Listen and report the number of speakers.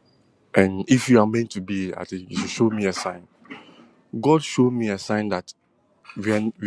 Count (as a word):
one